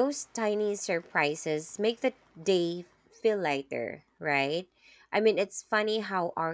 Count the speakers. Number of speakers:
one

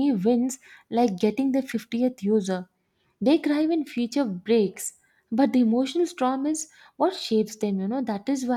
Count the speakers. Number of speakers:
one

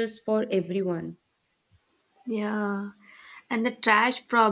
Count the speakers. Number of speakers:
two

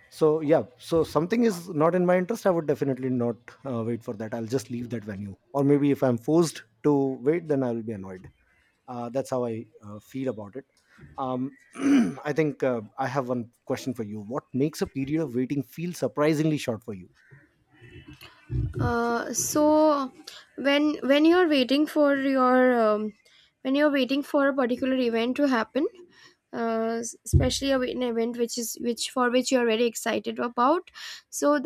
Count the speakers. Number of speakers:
two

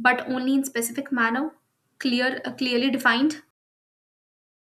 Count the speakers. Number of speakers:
one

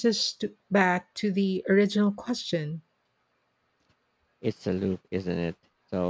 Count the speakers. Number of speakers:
two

